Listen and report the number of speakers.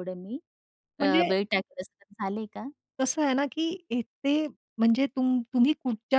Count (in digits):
2